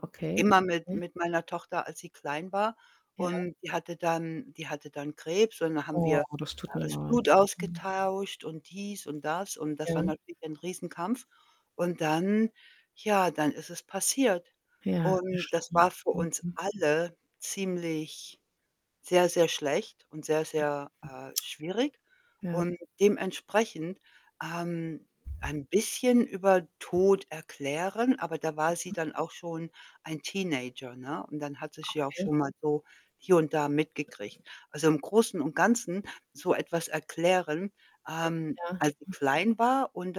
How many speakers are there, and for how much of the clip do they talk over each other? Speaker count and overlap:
2, about 10%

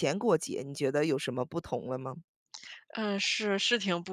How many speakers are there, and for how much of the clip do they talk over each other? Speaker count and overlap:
2, no overlap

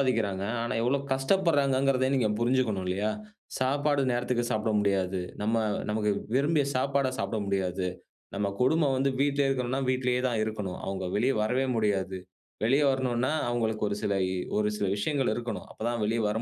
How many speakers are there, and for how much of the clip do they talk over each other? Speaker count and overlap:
1, no overlap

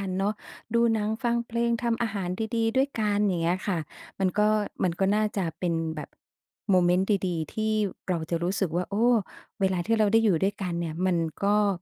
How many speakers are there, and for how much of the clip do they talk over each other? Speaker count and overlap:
1, no overlap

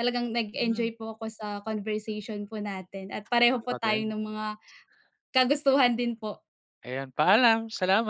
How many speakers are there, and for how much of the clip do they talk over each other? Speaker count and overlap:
2, about 10%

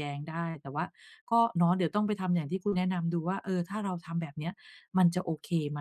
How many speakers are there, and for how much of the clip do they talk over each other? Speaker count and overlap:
1, no overlap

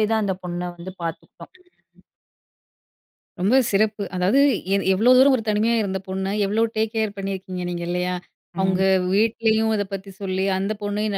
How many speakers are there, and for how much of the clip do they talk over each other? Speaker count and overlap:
2, about 2%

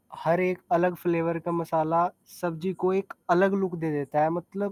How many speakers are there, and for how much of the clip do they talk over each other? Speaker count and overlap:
1, no overlap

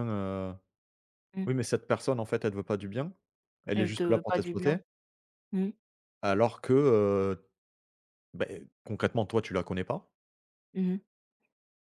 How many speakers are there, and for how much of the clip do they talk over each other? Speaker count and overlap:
2, about 8%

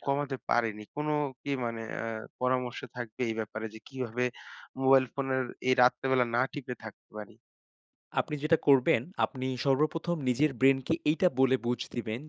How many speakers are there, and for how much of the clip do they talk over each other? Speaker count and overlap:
2, under 1%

